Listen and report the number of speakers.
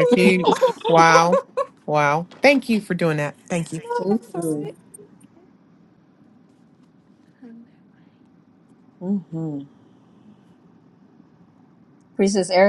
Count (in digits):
3